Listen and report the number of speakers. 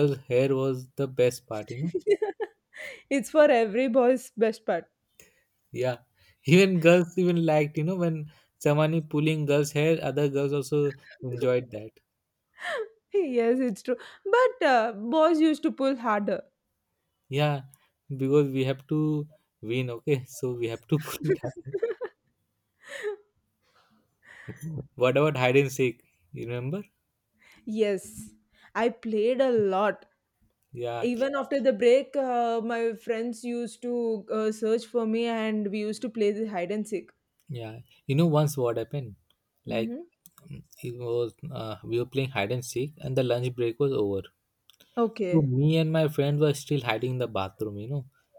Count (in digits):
2